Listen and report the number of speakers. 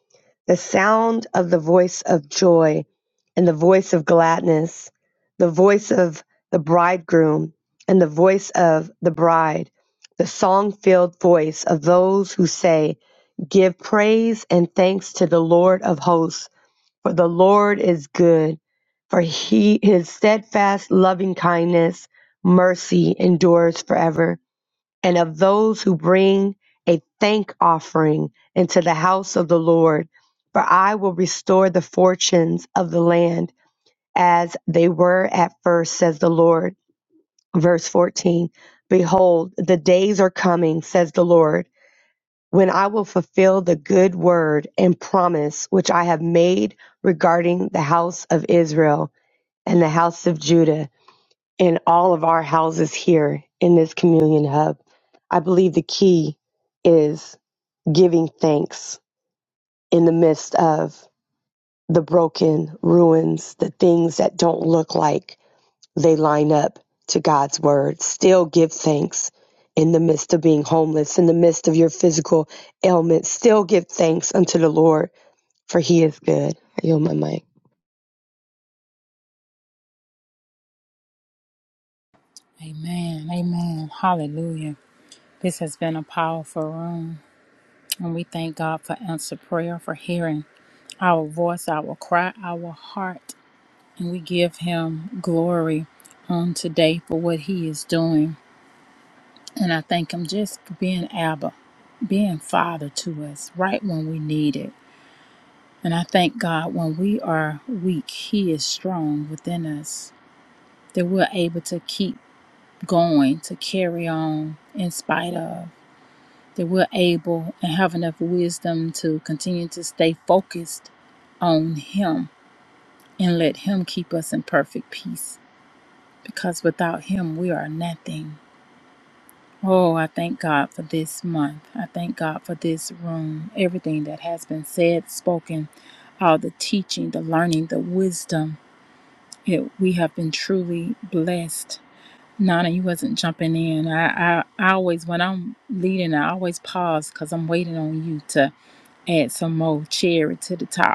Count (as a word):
two